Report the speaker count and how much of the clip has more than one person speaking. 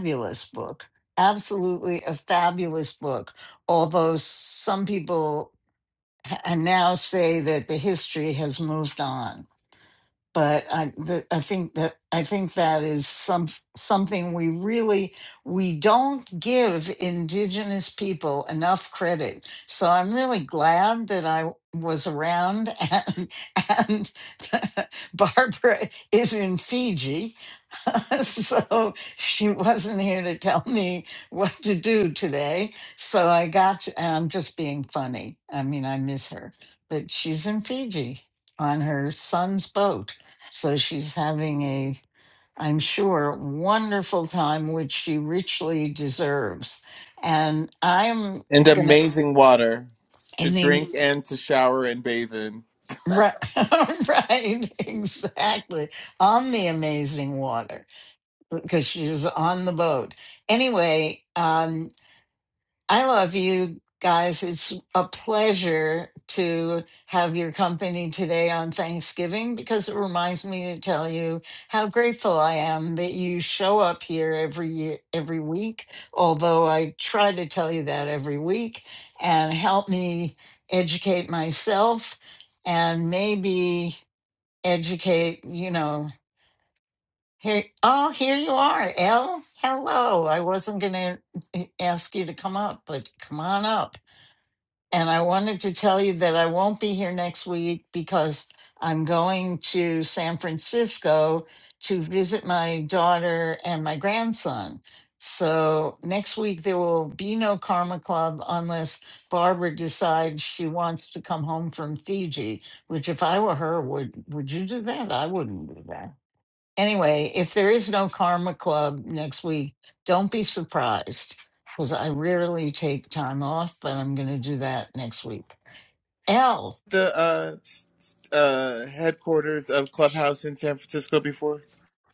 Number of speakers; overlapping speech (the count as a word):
two, about 1%